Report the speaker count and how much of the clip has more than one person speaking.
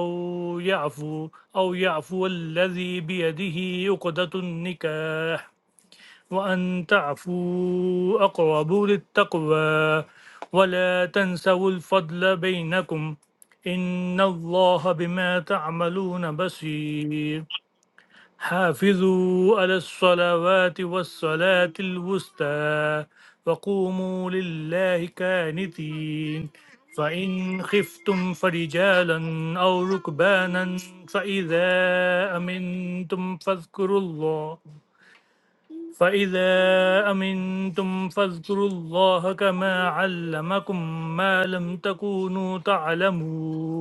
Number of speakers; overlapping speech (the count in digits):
1, no overlap